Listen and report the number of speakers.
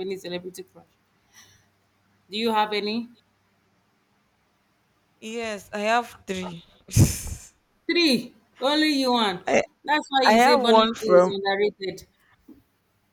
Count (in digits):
2